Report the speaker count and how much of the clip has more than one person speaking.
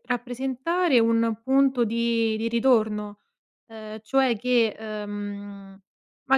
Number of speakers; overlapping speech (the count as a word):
one, no overlap